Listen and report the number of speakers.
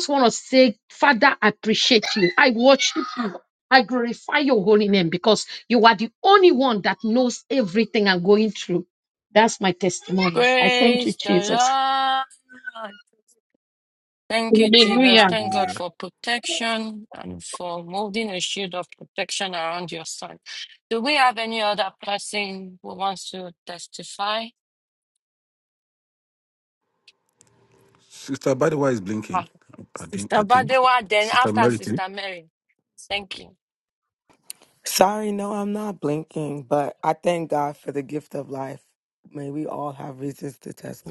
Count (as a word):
four